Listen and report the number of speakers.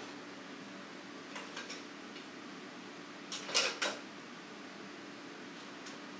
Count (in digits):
0